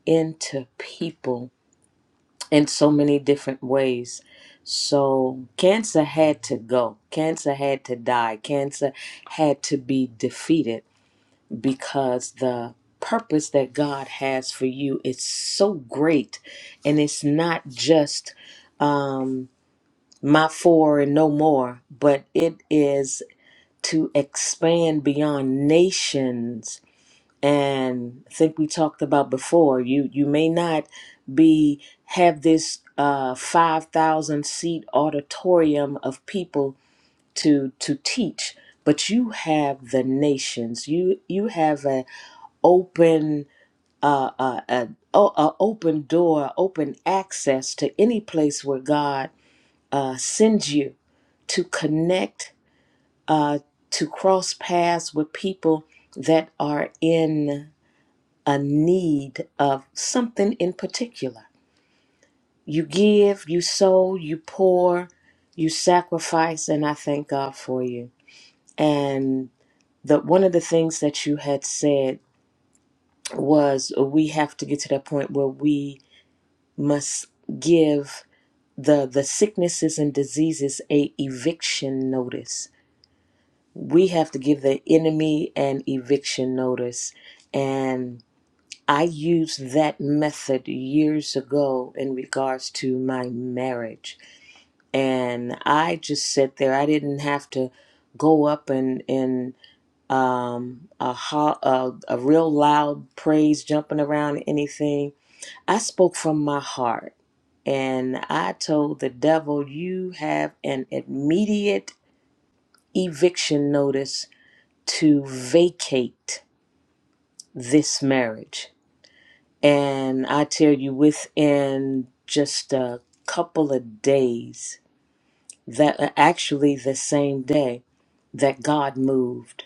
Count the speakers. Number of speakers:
1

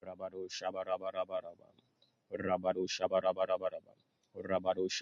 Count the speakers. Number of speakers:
1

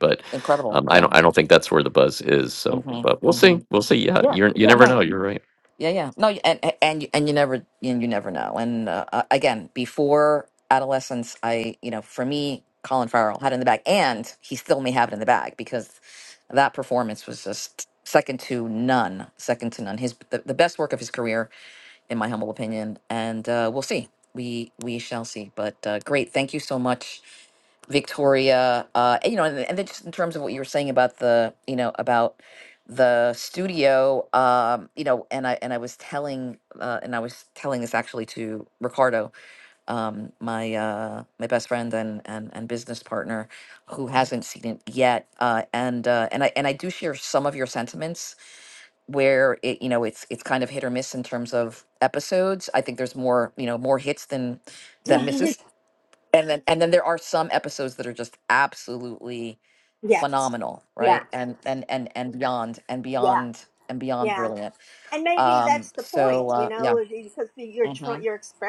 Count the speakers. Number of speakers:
3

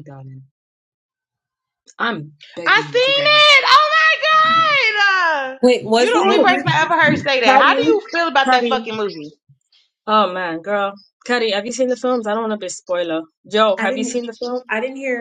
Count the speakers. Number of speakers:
3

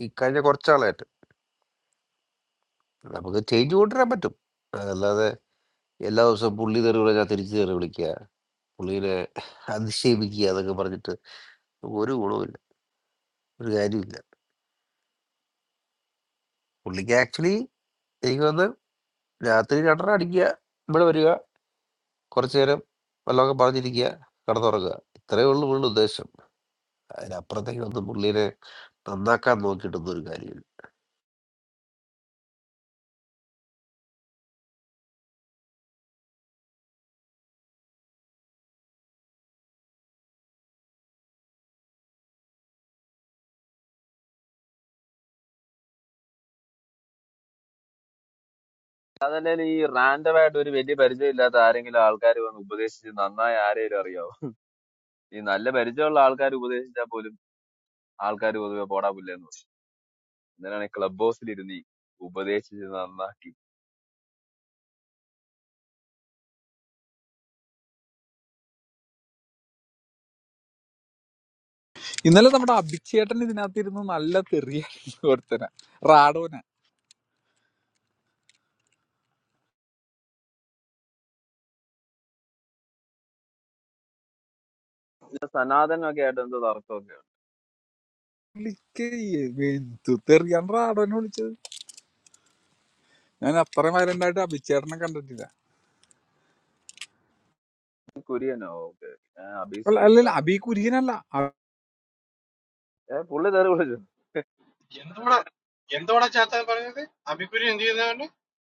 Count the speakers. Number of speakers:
4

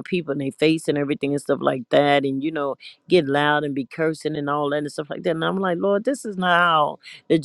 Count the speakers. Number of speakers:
1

